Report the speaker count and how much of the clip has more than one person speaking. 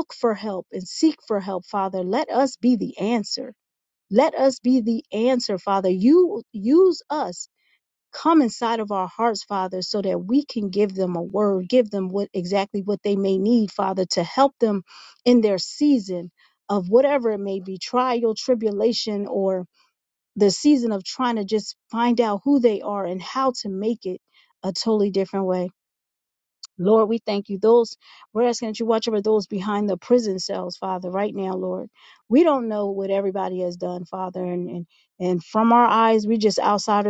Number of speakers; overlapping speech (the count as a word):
one, no overlap